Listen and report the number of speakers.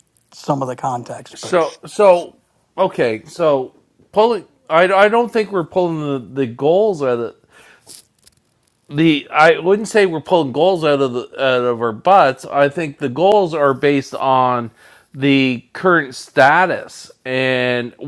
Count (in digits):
2